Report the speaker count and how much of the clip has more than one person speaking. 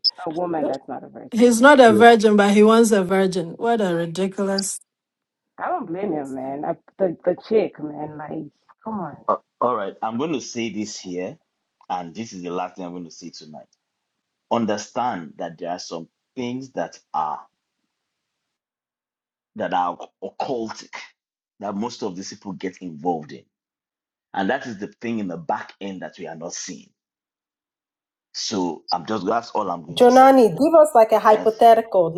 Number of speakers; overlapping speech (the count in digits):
4, about 2%